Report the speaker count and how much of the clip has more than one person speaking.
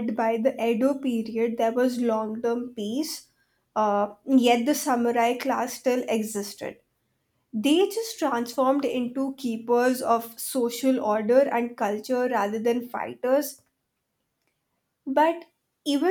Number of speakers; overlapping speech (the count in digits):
1, no overlap